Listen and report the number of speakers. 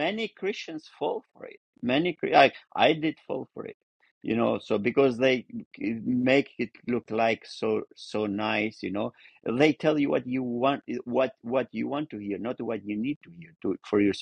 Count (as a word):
one